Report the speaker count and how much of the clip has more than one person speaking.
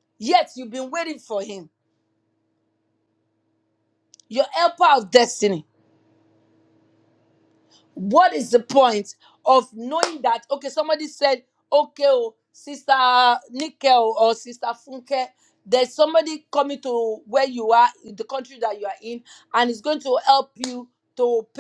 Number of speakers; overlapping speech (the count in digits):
1, no overlap